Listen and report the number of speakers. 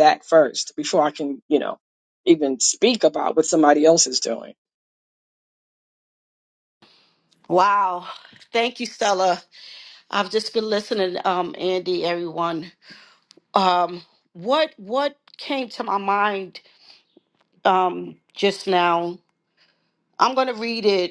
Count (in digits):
2